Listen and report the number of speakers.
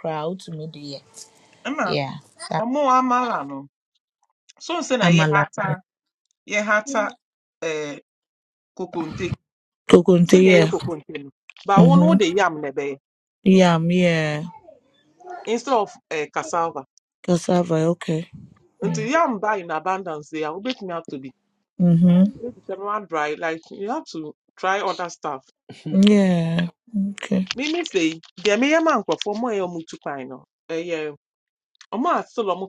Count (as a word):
two